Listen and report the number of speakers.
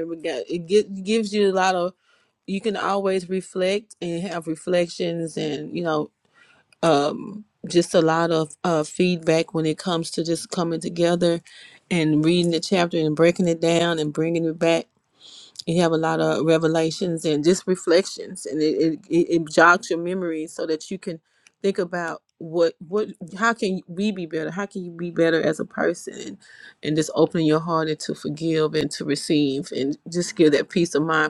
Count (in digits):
1